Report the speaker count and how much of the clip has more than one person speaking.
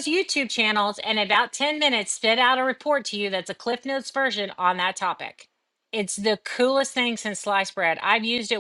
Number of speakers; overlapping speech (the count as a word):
one, no overlap